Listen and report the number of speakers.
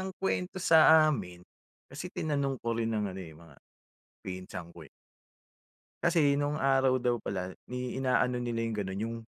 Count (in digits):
1